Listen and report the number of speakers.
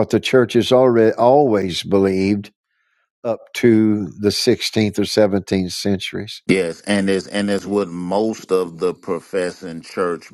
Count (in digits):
2